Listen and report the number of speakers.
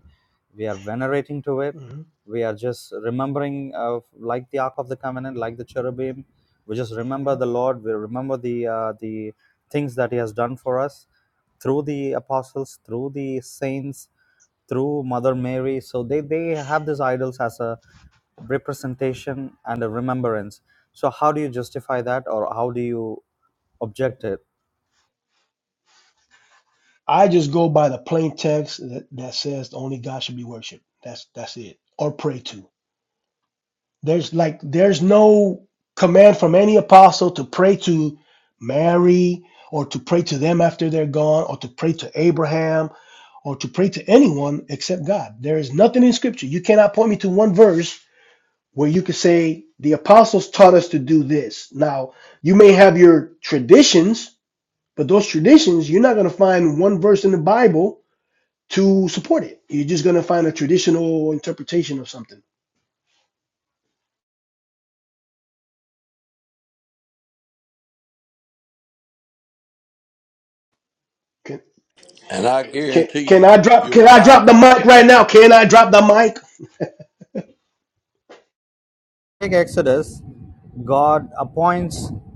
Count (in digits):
3